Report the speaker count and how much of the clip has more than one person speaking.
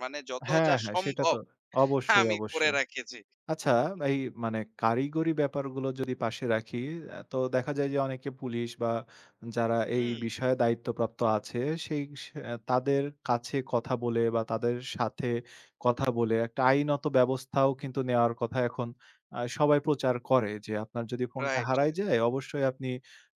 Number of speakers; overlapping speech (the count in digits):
2, about 10%